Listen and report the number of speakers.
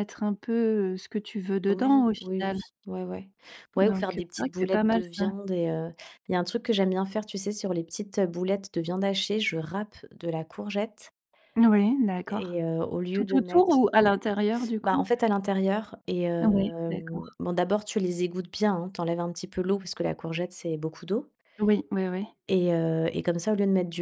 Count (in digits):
2